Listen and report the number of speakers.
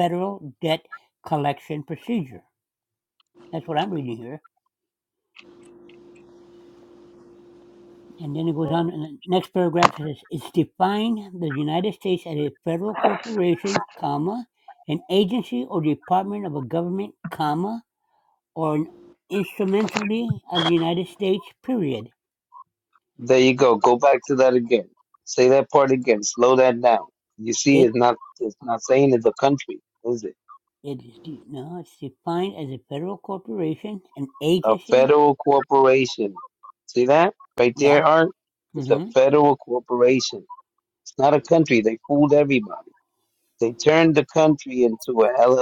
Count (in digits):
2